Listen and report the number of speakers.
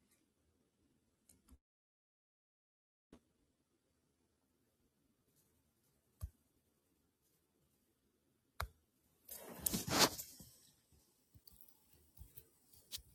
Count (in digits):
0